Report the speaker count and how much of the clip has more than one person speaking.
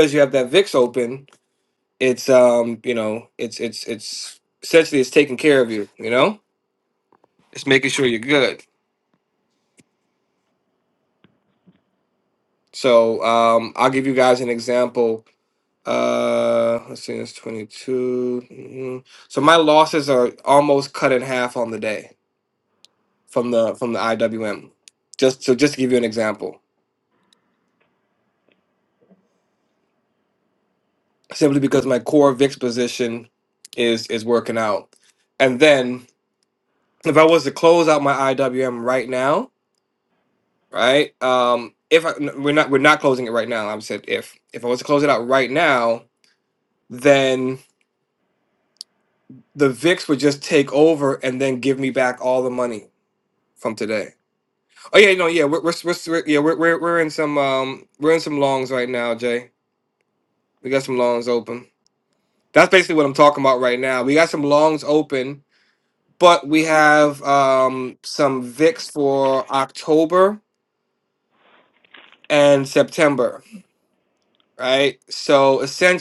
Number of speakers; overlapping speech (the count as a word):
one, no overlap